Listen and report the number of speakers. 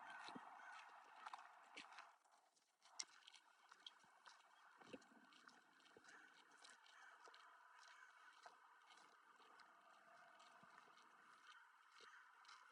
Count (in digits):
0